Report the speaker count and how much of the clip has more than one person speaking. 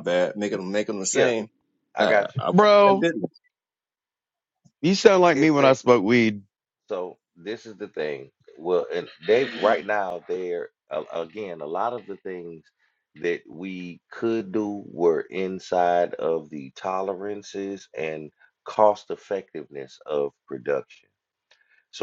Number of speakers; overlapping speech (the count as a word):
three, about 5%